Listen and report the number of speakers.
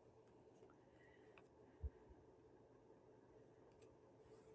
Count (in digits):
0